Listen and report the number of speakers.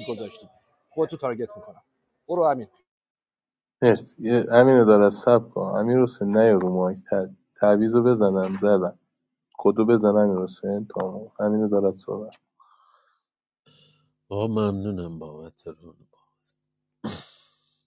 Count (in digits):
3